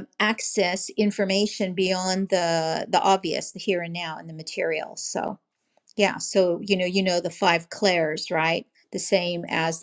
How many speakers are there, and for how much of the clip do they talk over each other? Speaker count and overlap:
one, no overlap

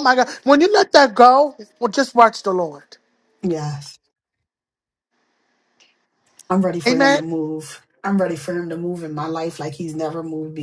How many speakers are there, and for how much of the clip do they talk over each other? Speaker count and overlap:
two, about 4%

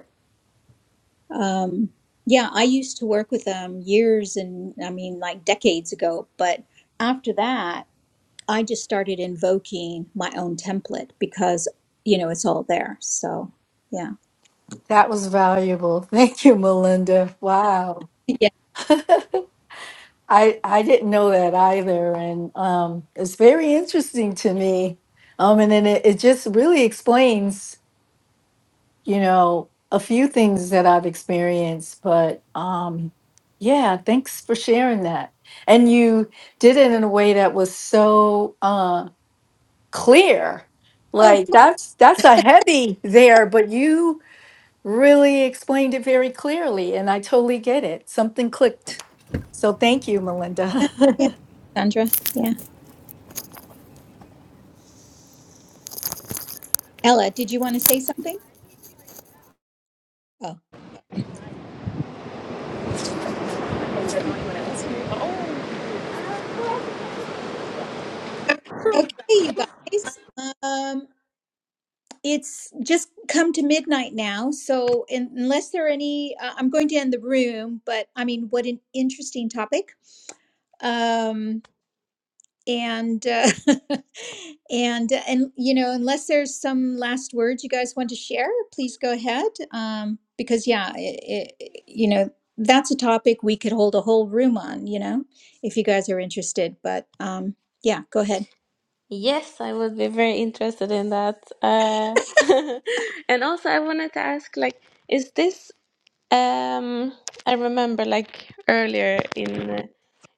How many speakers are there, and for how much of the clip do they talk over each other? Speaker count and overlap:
three, under 1%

